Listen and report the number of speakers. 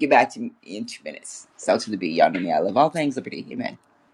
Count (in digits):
1